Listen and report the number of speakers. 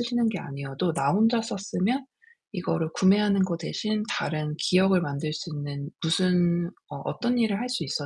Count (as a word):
one